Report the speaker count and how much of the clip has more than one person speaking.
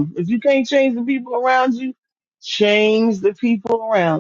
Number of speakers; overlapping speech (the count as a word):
one, no overlap